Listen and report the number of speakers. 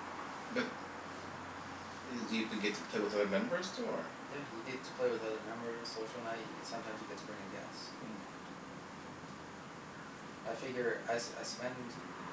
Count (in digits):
2